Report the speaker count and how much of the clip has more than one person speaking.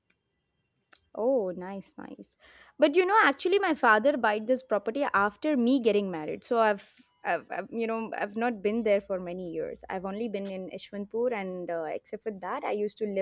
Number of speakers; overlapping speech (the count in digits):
1, no overlap